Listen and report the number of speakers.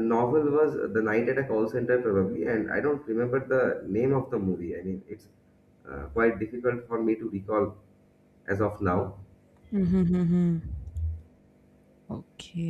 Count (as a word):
two